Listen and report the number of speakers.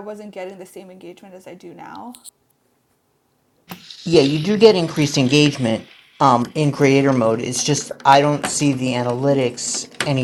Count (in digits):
2